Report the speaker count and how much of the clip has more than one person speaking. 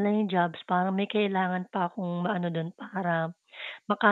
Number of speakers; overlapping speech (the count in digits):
1, no overlap